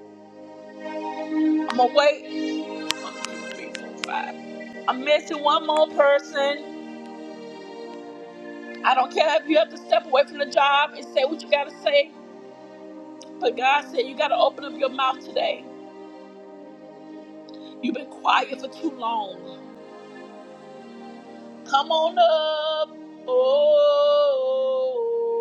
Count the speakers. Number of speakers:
one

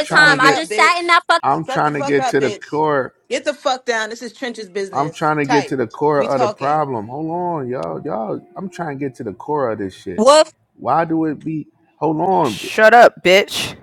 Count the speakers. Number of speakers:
four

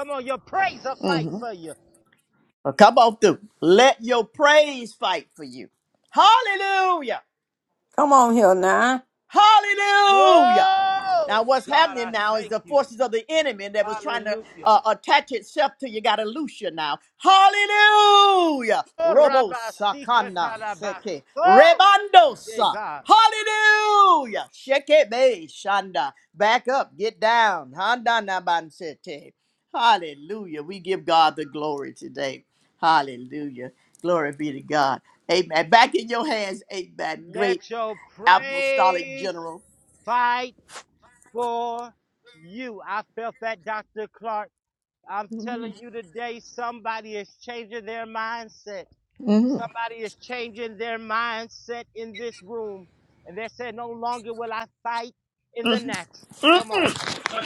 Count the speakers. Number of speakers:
three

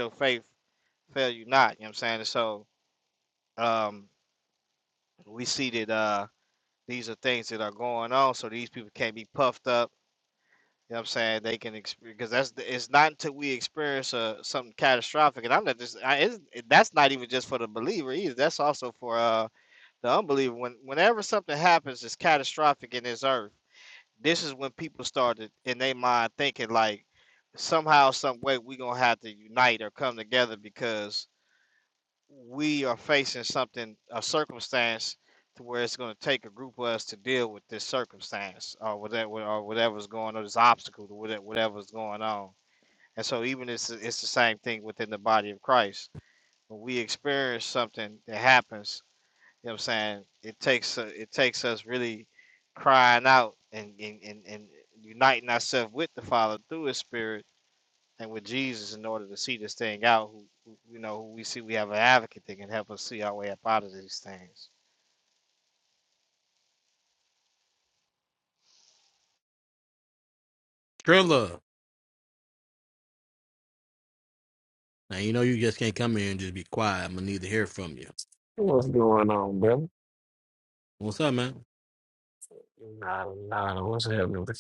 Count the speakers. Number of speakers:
three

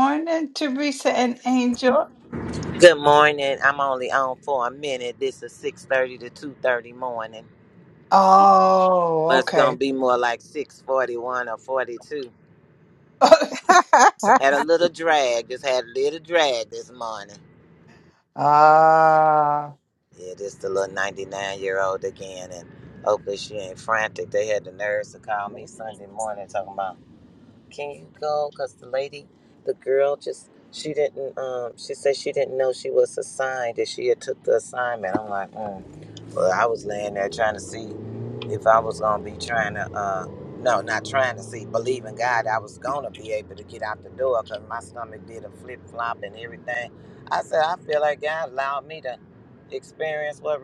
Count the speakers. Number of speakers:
two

